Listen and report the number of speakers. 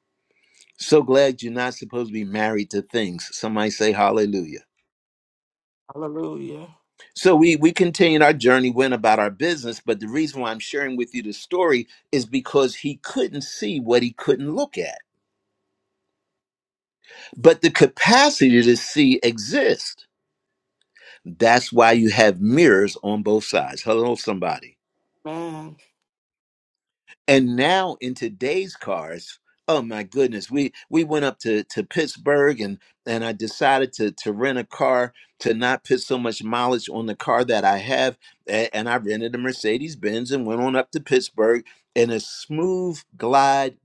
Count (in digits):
2